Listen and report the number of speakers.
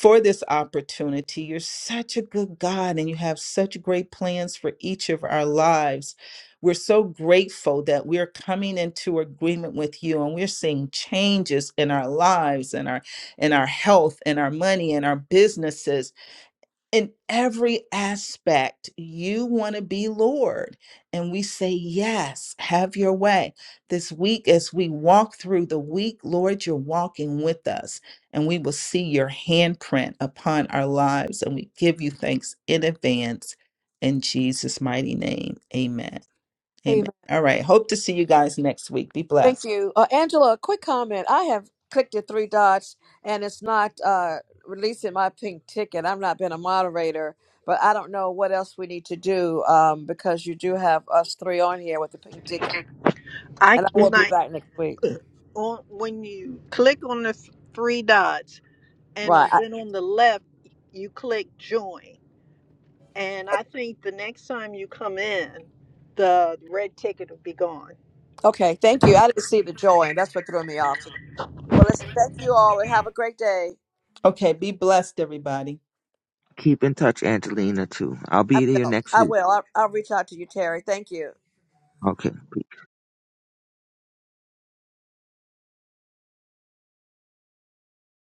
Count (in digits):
4